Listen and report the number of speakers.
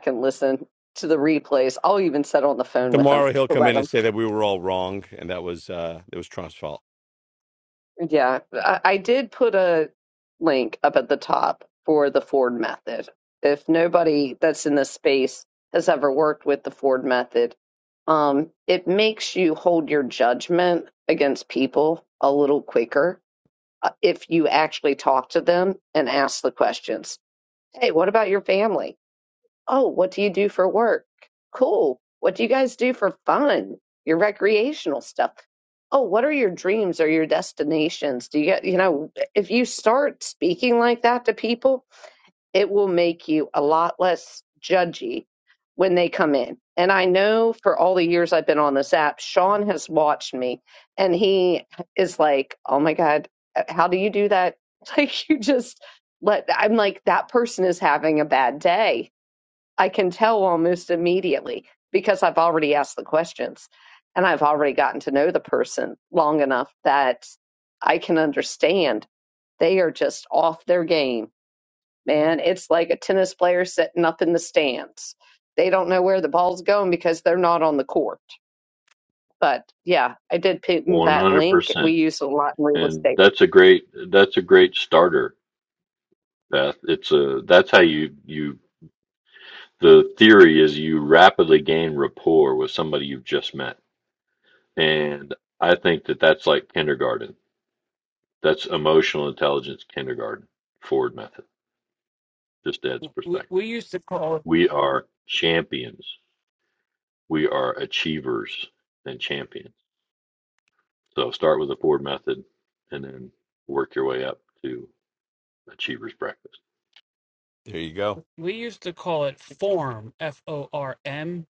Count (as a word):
four